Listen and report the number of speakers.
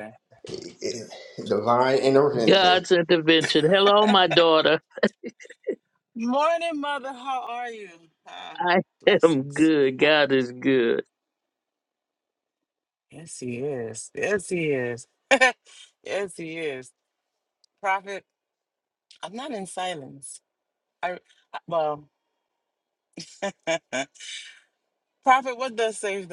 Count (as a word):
three